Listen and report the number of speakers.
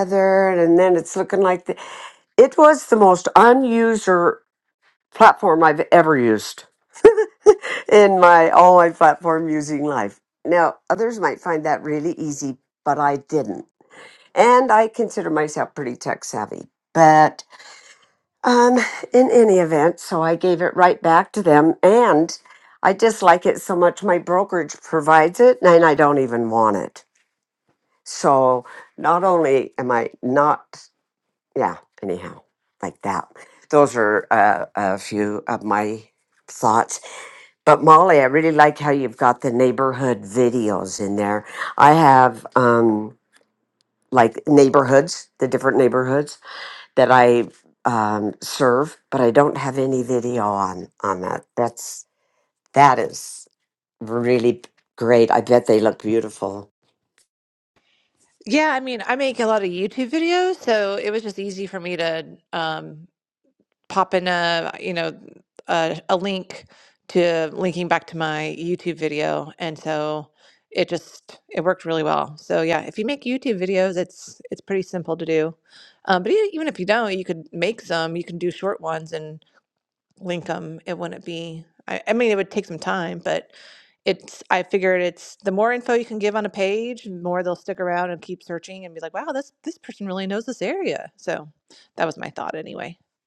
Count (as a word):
two